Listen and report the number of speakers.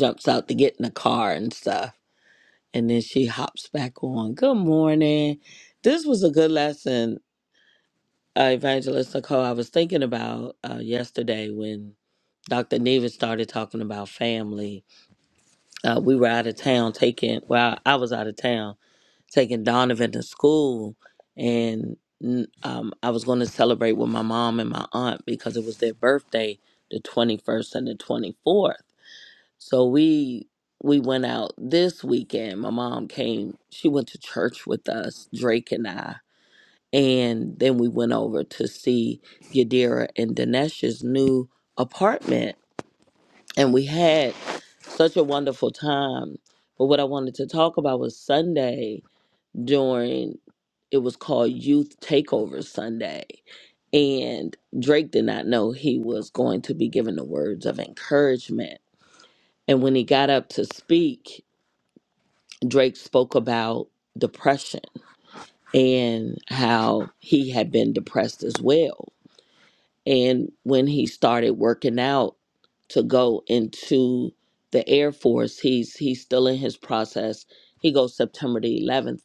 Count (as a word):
one